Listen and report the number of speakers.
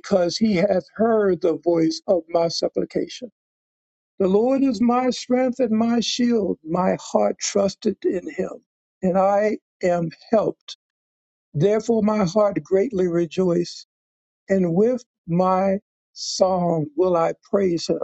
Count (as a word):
one